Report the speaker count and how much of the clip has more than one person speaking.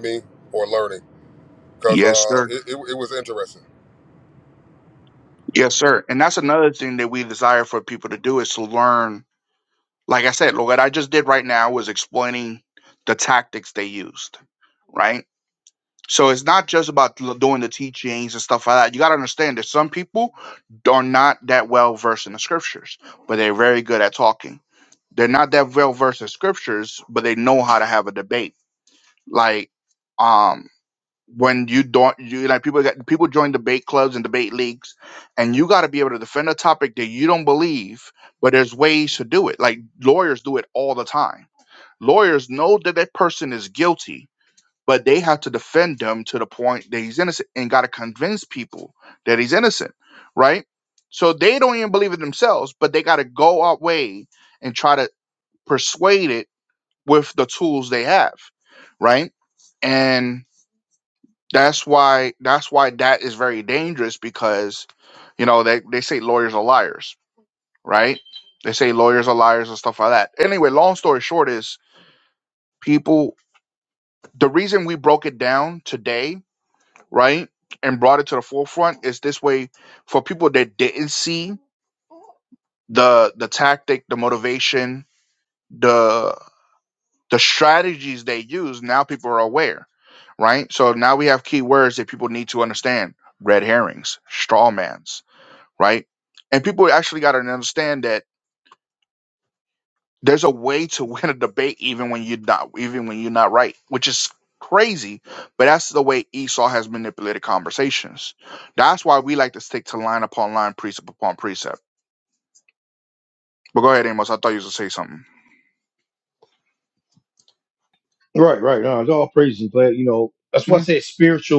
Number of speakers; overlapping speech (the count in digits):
3, about 1%